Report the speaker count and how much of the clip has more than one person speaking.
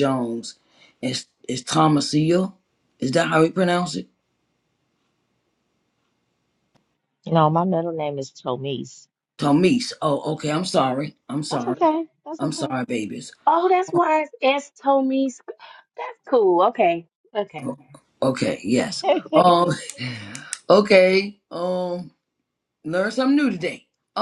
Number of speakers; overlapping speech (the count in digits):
3, about 3%